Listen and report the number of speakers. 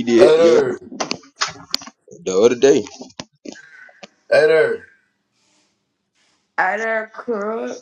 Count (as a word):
three